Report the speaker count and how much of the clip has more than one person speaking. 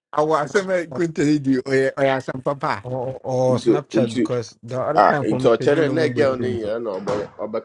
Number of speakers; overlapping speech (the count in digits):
3, about 33%